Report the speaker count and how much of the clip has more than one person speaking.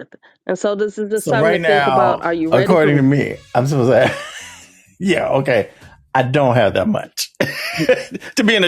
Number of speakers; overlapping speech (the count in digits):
2, about 20%